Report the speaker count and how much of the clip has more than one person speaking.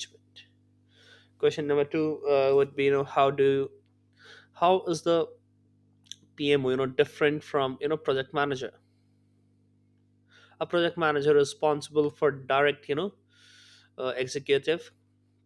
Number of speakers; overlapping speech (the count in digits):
1, no overlap